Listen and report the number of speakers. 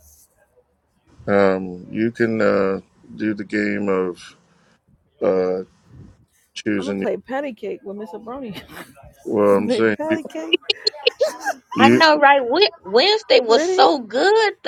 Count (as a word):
three